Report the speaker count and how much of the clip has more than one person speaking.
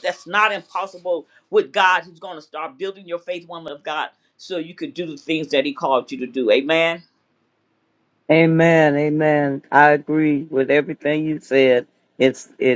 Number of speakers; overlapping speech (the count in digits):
2, no overlap